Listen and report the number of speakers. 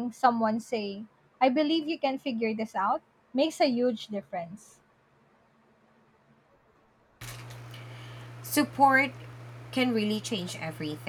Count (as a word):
two